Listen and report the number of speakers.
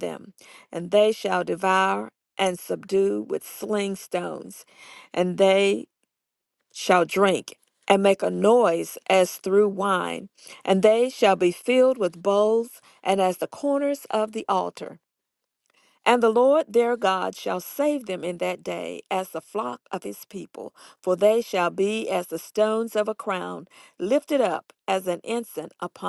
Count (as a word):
one